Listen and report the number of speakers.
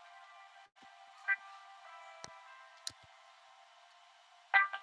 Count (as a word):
zero